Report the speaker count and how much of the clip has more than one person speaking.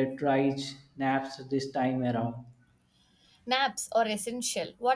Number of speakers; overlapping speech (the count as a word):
two, no overlap